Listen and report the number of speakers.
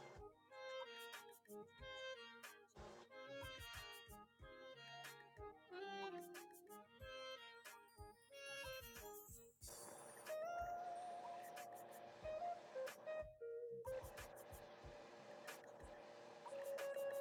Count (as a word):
zero